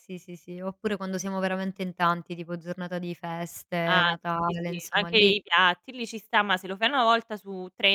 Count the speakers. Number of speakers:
2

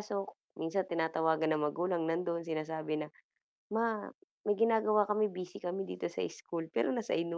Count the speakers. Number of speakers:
1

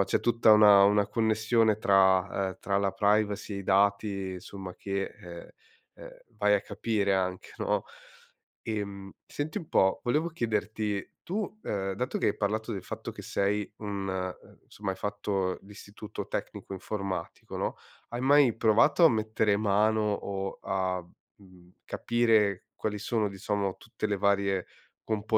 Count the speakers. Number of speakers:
1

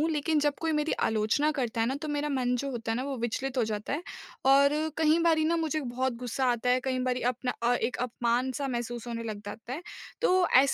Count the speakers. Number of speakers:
1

